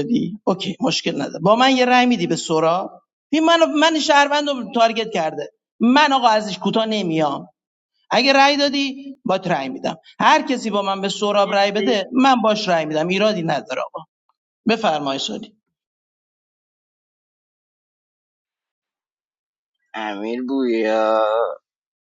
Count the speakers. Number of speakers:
two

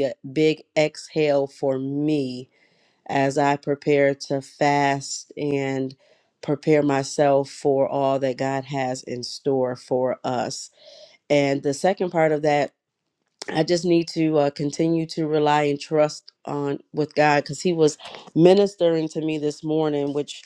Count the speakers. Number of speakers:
one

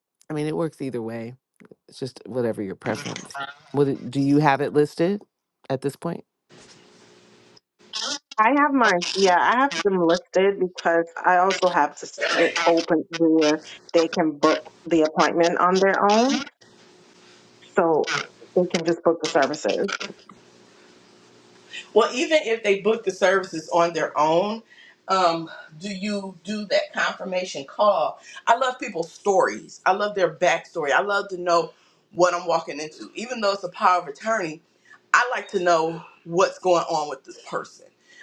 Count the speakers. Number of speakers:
three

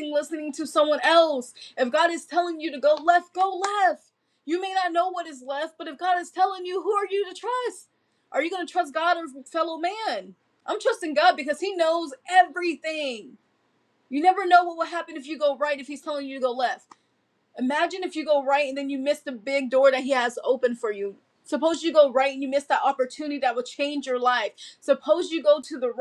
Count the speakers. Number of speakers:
one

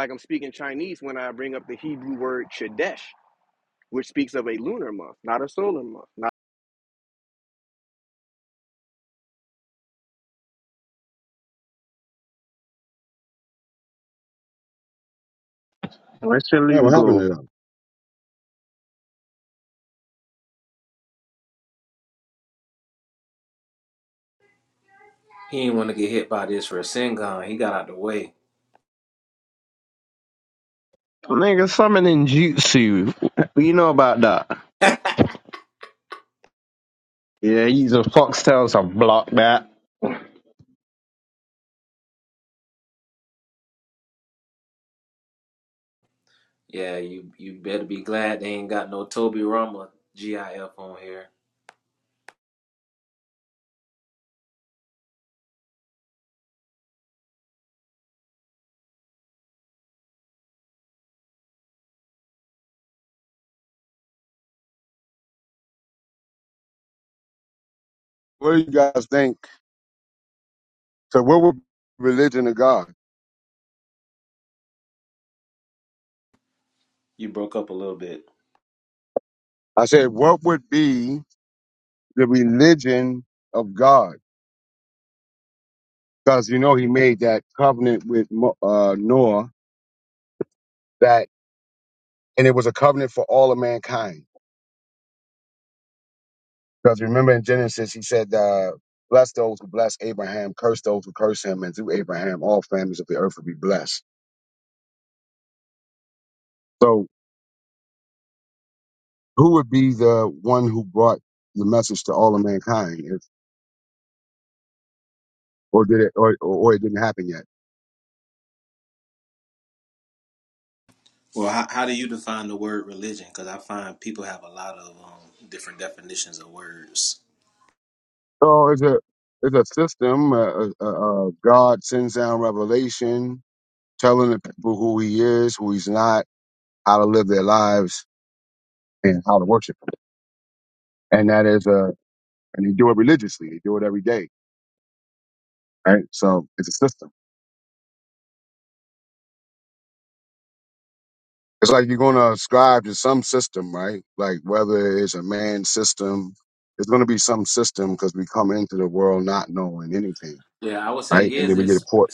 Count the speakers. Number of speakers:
four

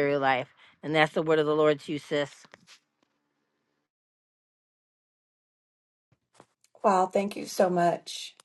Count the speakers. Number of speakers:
two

